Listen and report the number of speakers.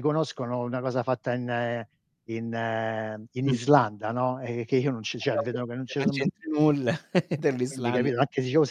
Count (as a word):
two